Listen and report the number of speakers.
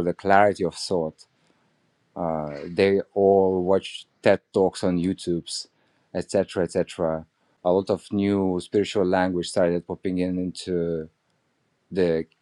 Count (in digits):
1